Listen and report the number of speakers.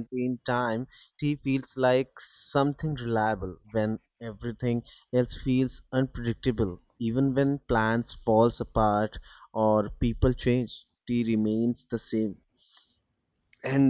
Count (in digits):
1